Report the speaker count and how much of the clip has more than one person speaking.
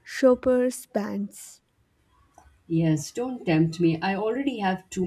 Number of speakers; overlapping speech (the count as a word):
two, no overlap